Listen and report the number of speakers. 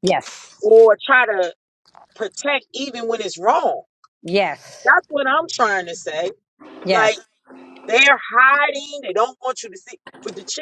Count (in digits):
2